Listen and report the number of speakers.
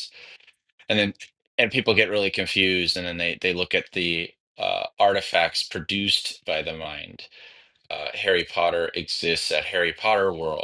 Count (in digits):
1